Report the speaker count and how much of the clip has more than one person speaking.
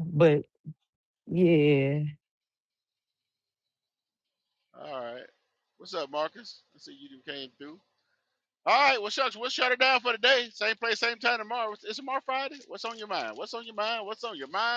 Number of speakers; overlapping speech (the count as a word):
two, no overlap